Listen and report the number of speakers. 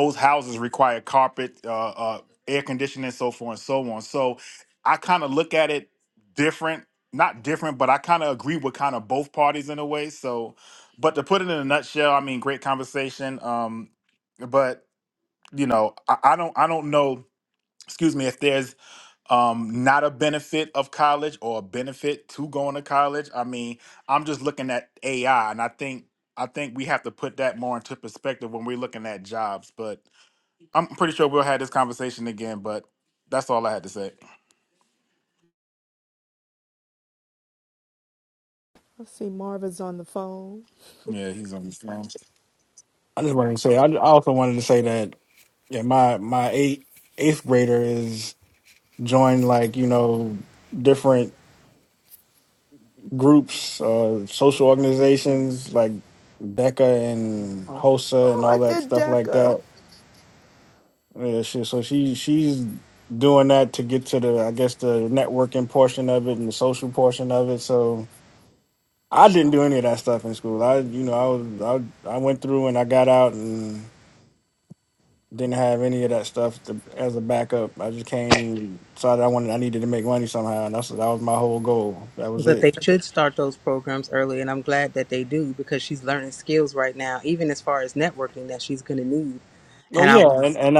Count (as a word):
four